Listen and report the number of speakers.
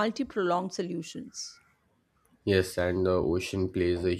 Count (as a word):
two